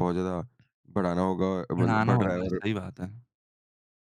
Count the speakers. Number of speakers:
2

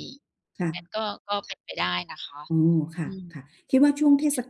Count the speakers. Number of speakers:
2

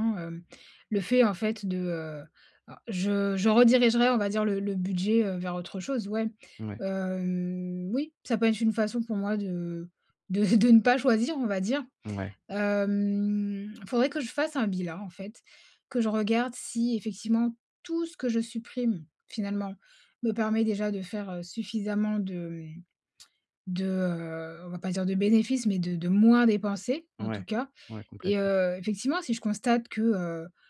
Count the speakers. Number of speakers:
2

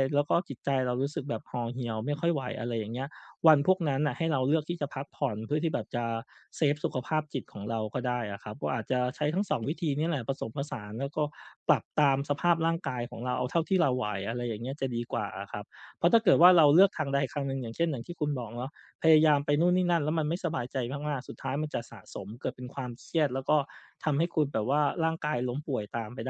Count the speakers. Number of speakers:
1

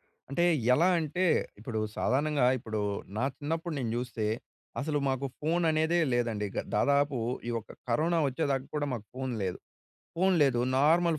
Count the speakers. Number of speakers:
1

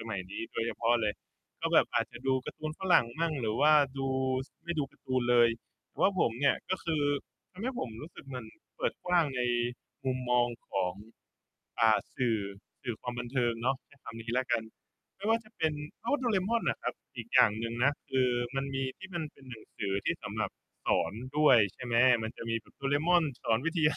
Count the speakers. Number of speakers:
1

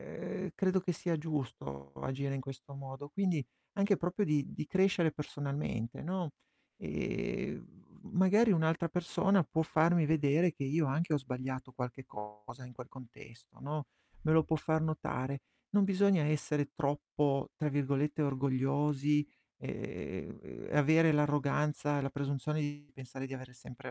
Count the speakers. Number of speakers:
1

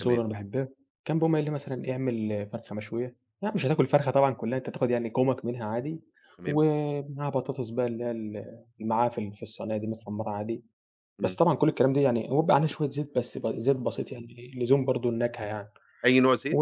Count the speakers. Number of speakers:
2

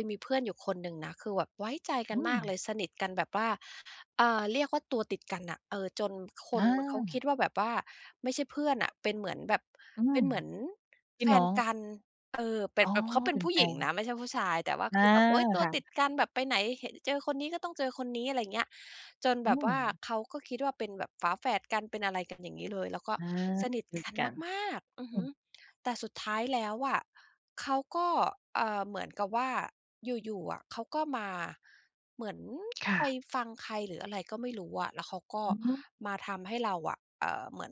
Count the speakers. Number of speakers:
2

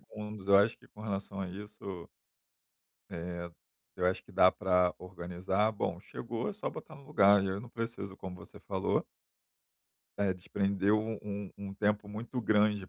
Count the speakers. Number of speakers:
1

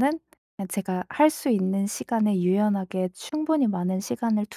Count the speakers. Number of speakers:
1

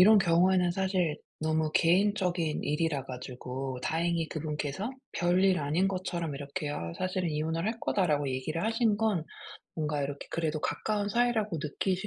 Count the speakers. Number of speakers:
1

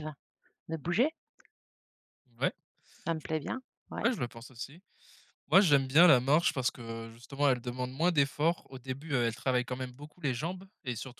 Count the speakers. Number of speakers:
2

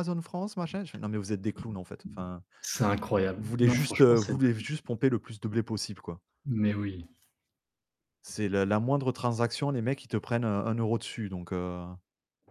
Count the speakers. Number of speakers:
2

